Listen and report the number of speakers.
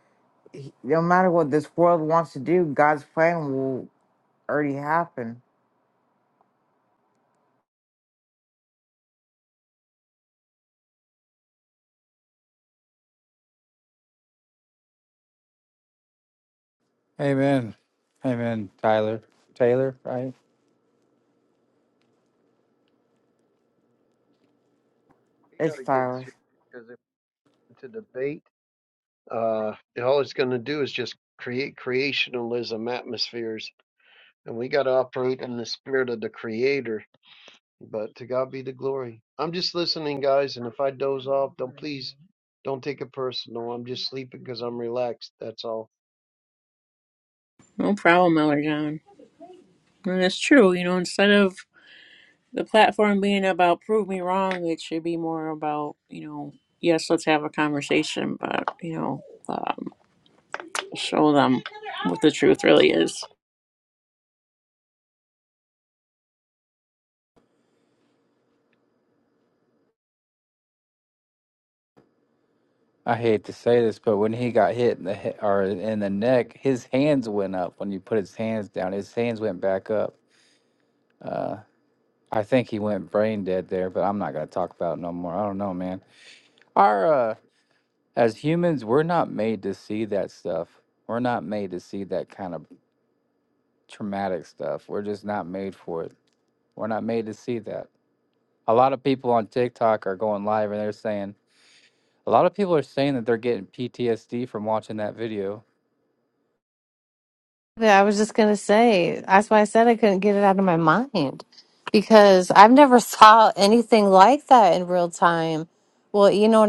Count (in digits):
5